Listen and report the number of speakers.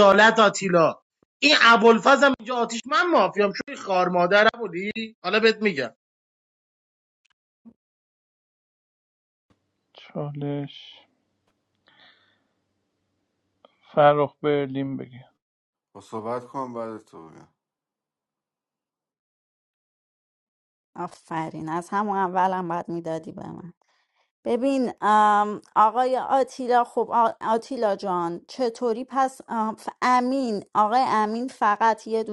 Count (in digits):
4